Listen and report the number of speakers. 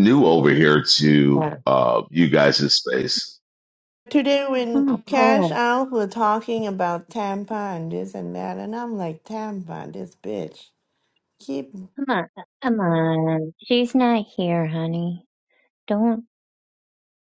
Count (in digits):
3